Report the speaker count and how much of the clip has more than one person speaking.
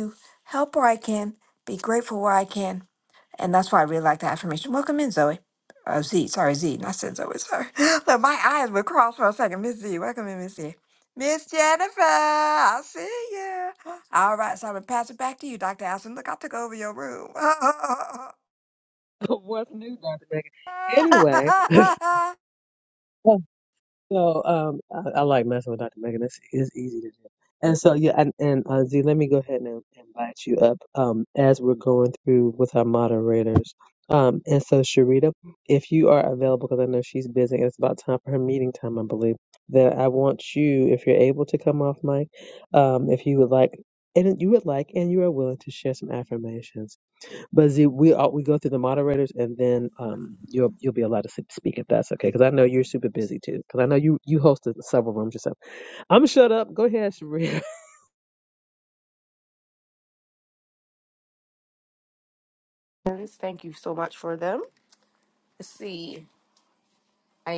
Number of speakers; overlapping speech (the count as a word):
three, no overlap